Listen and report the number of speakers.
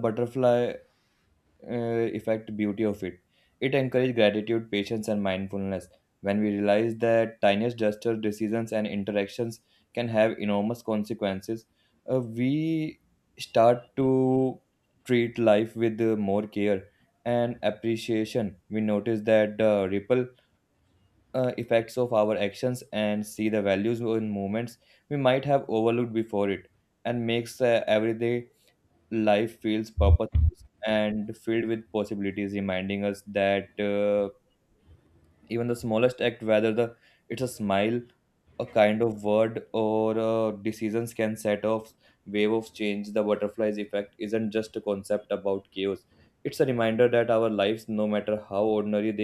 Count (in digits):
1